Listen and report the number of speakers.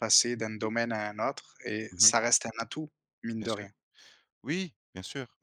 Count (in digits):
2